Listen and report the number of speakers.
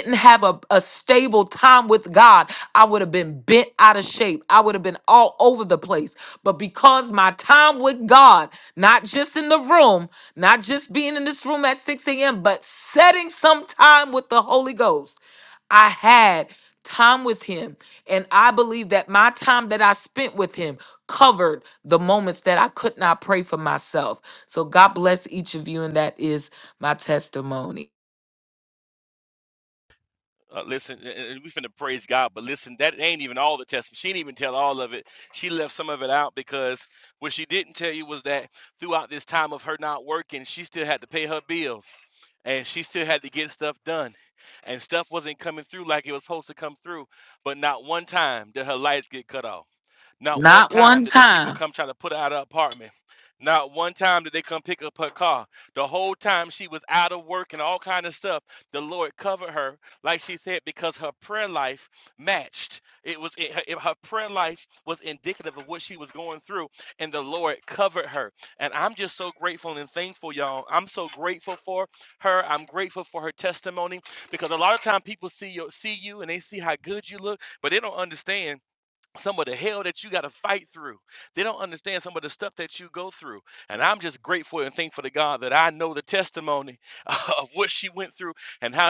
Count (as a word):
two